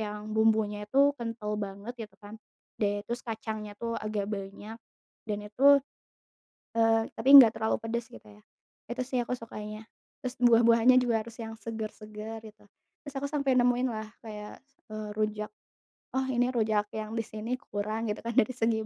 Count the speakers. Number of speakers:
one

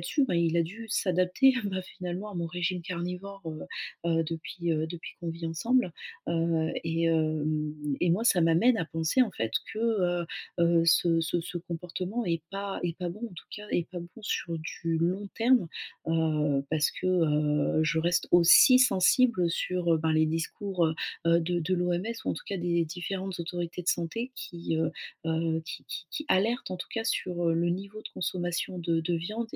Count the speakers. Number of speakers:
one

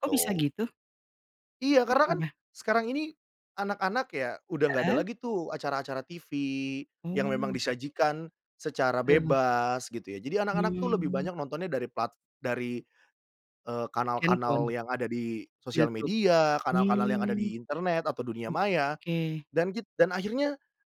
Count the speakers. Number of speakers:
two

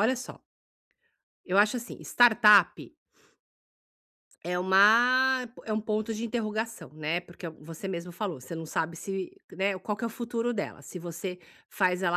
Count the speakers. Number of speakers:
one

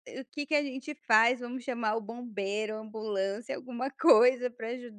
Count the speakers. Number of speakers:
one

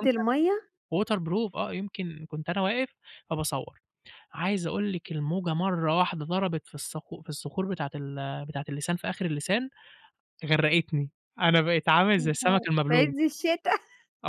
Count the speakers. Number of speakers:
two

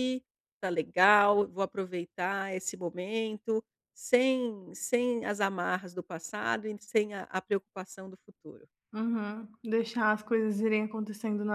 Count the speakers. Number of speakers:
two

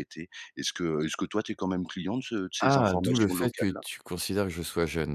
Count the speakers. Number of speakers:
two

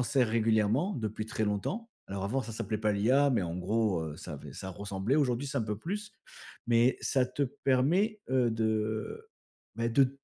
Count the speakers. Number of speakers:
one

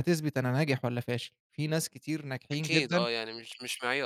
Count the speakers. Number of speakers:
two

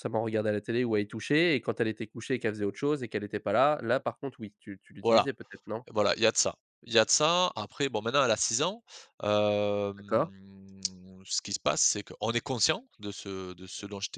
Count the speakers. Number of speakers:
two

